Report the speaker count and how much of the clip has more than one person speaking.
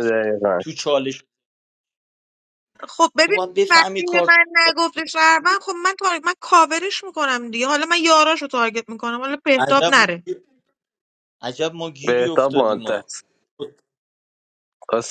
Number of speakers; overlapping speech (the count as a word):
three, about 23%